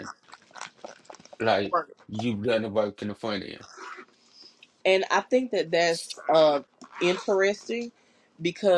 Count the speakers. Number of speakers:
2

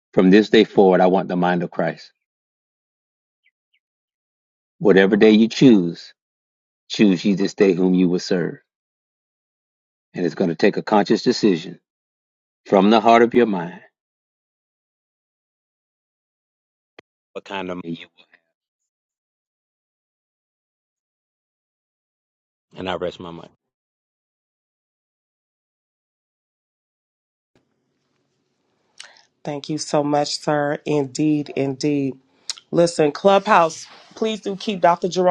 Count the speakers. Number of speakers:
2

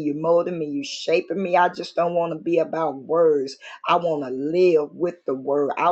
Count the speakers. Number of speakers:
1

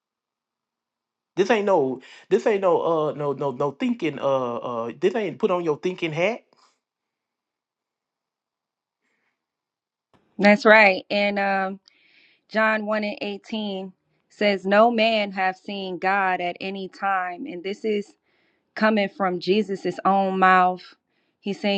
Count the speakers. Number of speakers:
2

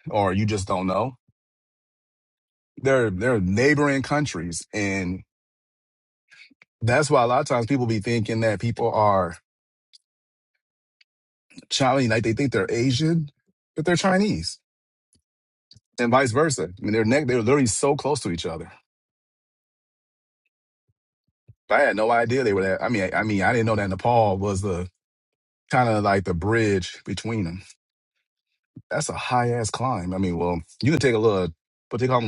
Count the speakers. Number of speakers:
1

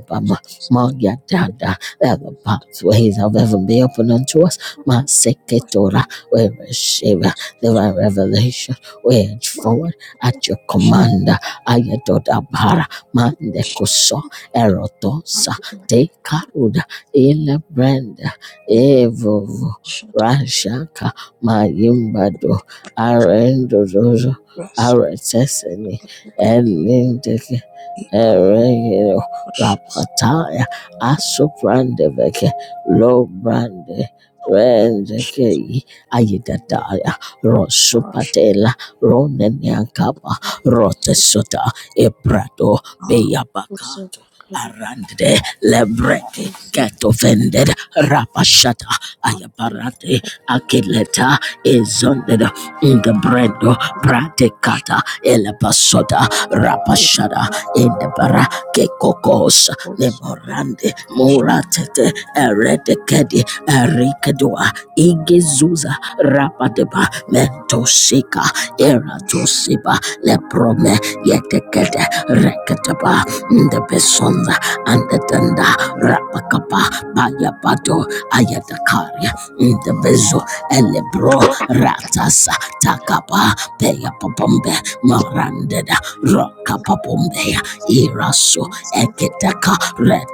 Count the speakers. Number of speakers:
2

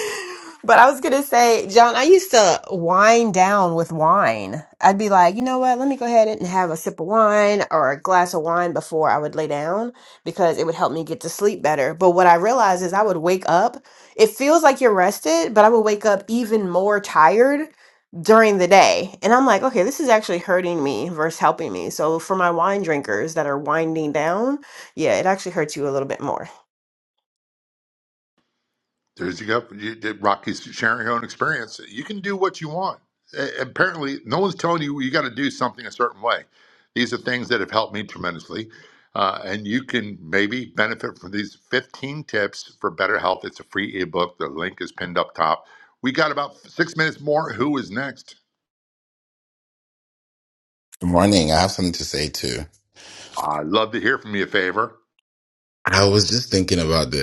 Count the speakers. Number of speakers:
3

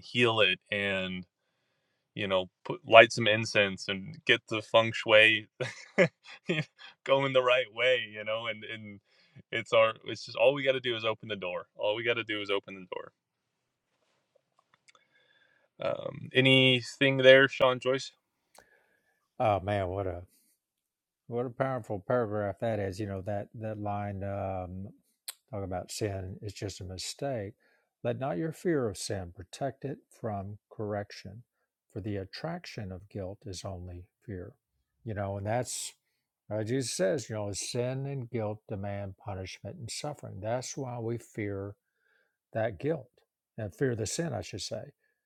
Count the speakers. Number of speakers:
2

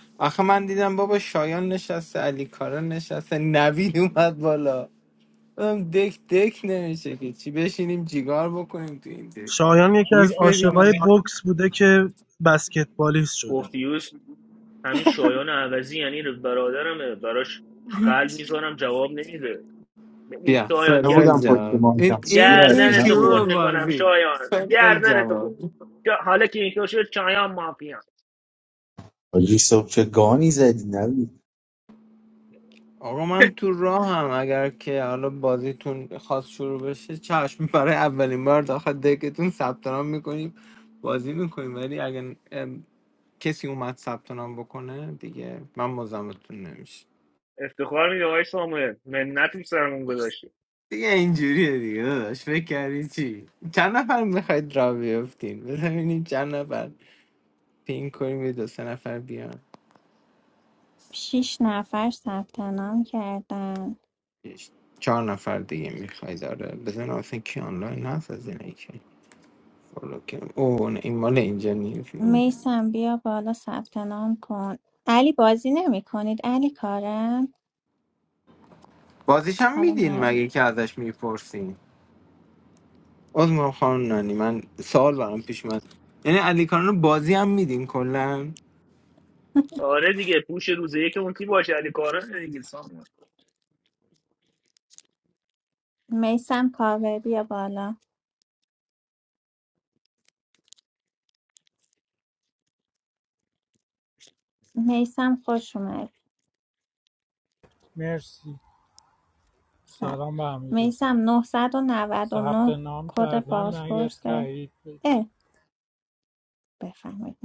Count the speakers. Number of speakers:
6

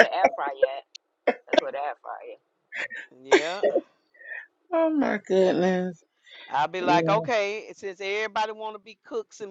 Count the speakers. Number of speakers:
3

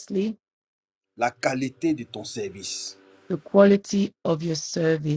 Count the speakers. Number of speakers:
2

